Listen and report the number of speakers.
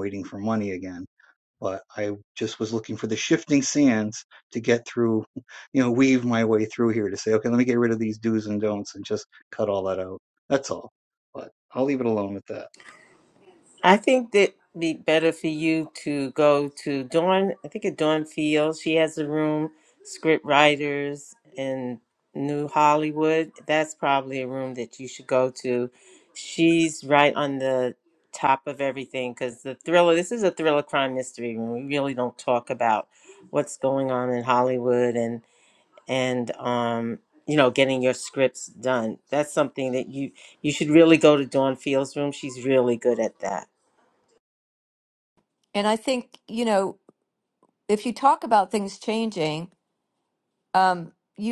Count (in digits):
3